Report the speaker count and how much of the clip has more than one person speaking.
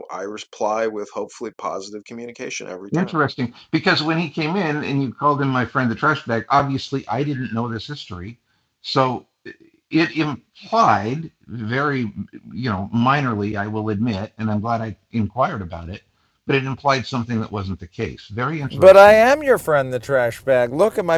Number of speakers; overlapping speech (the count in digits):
3, about 3%